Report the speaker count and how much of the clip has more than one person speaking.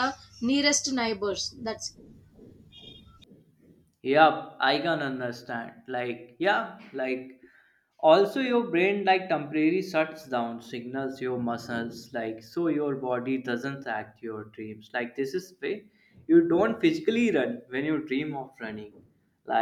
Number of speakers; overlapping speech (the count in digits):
2, no overlap